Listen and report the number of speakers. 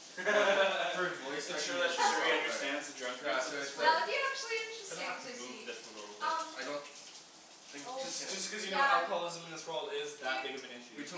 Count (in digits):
4